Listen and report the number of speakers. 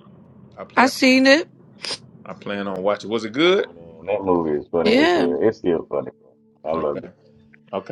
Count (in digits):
3